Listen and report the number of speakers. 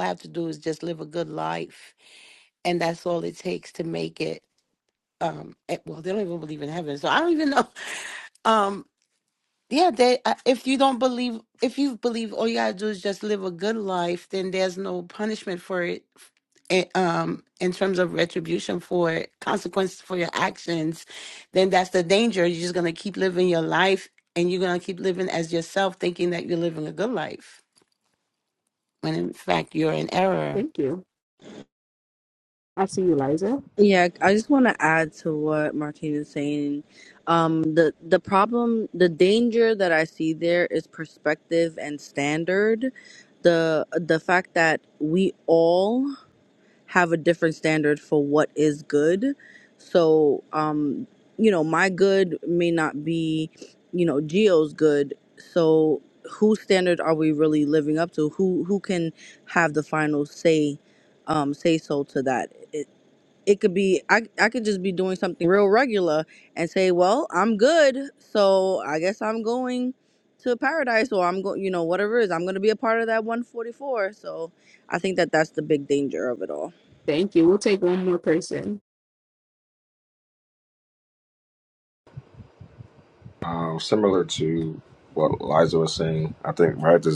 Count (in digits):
4